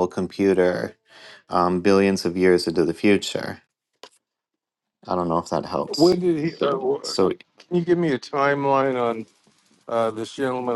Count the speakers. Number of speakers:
two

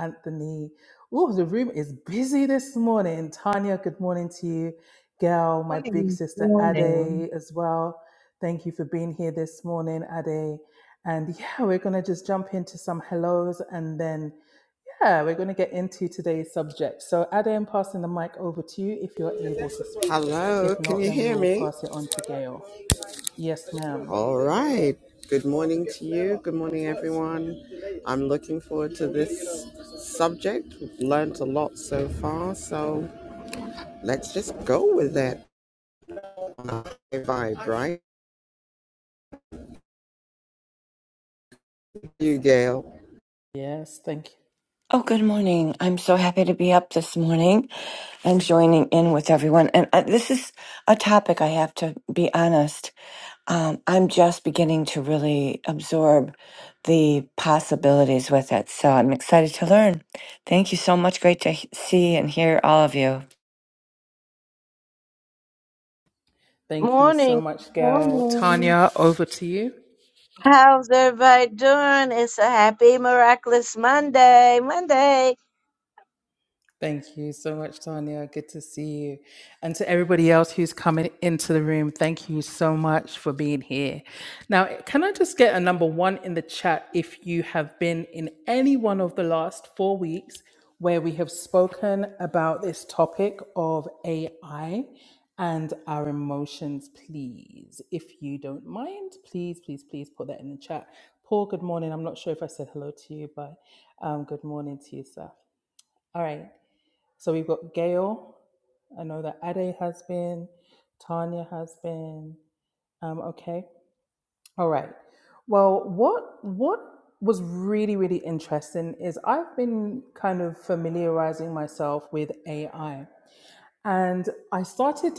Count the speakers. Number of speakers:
four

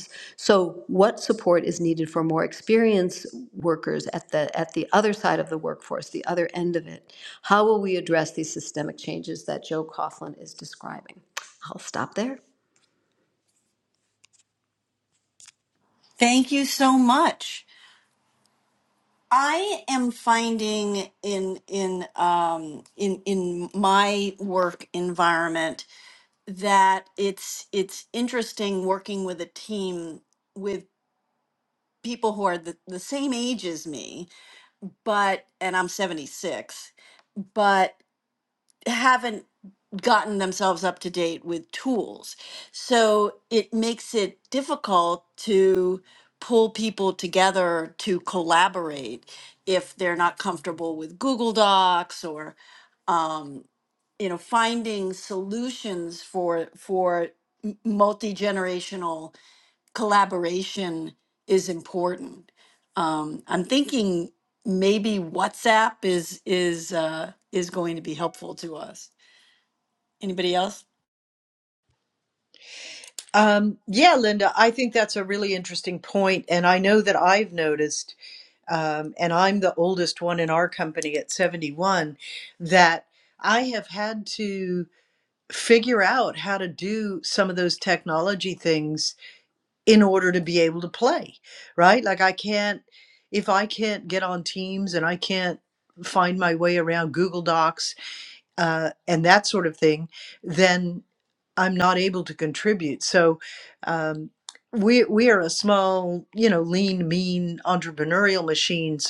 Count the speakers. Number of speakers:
three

